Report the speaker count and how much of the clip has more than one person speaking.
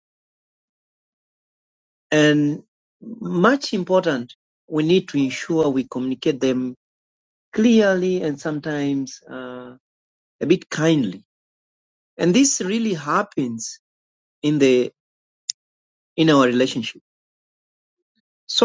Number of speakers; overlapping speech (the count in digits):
1, no overlap